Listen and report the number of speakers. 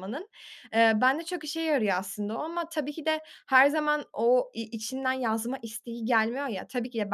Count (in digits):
1